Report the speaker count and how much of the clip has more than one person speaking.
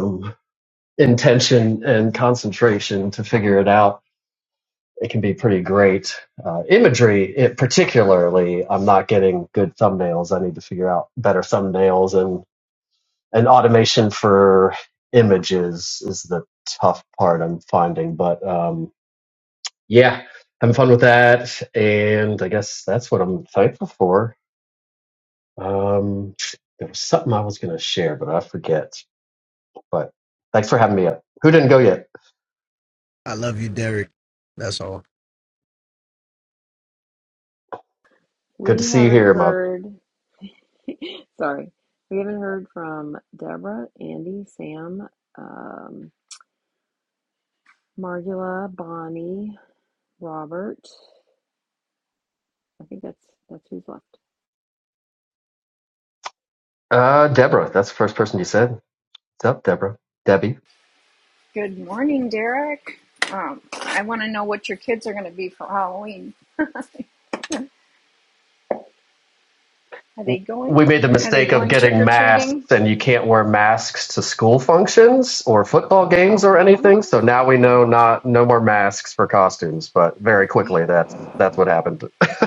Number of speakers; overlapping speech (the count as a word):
four, about 3%